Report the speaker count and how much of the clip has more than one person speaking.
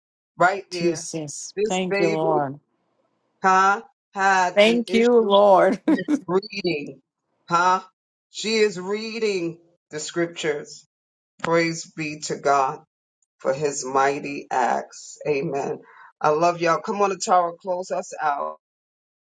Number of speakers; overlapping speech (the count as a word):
two, about 9%